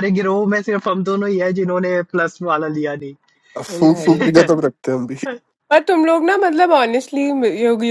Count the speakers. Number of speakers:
3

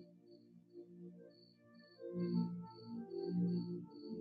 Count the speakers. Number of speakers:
0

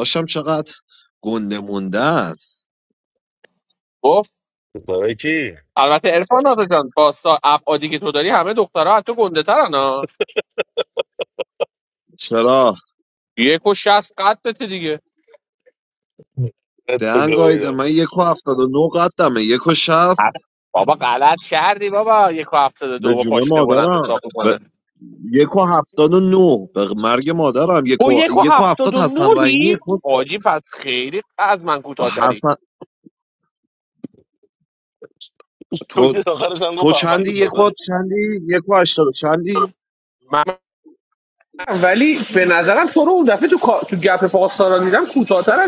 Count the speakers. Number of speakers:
3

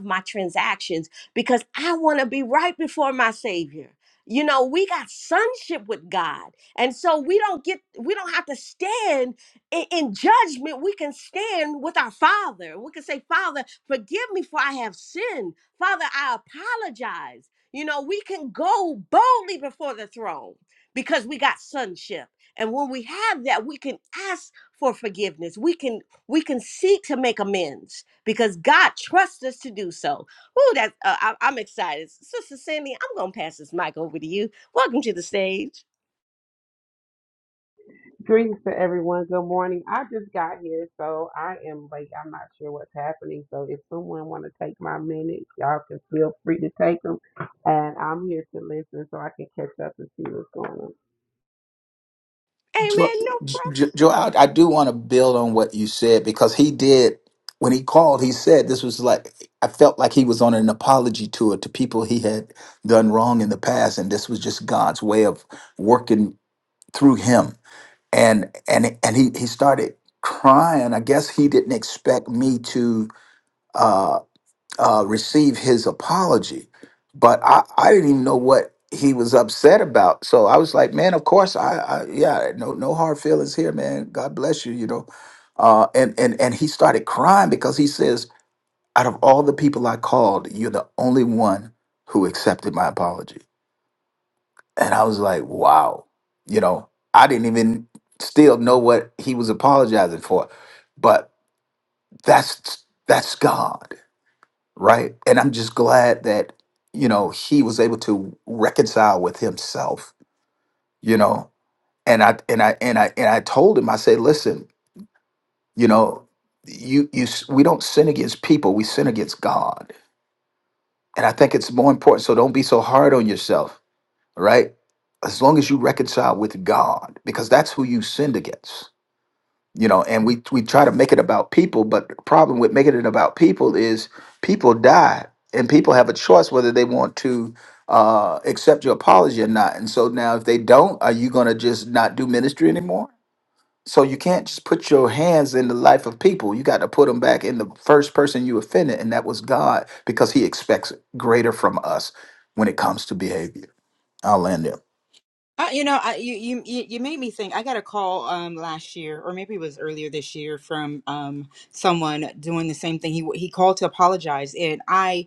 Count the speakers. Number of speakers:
4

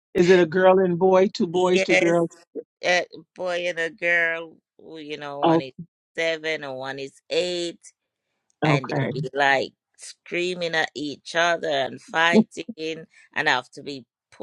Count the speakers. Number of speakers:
2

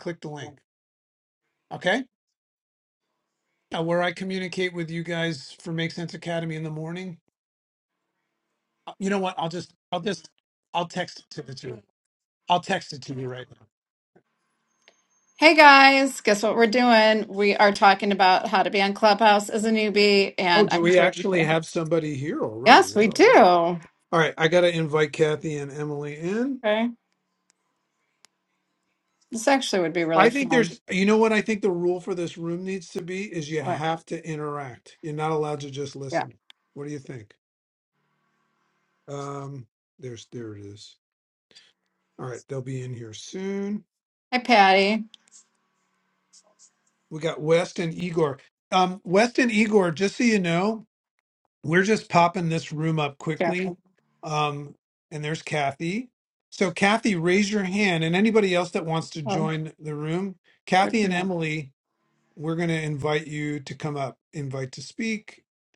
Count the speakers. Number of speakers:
2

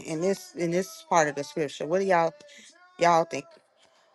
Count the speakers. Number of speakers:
1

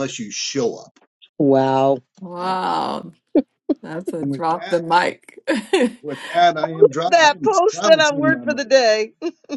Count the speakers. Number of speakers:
3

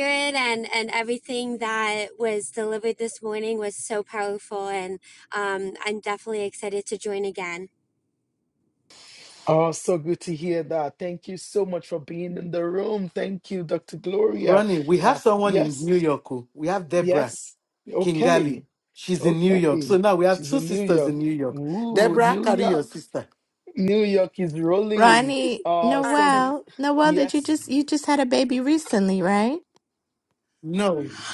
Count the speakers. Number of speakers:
4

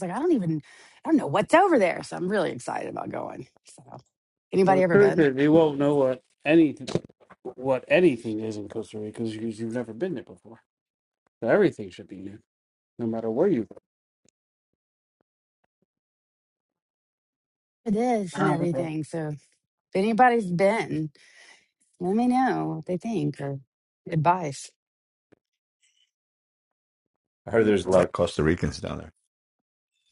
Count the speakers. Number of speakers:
3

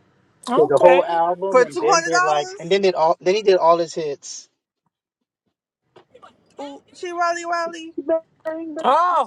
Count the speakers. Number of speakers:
3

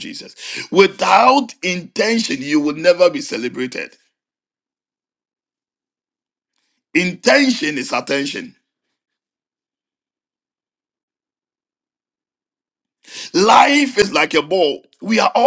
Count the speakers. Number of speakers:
1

